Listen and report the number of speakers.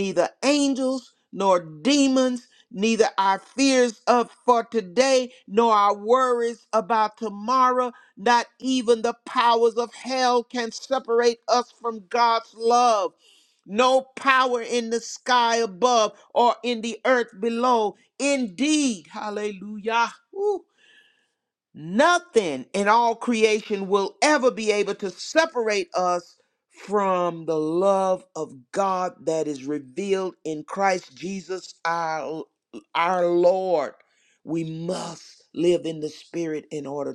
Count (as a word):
one